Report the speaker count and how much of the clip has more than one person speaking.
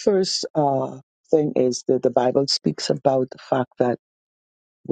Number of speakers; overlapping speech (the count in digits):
1, no overlap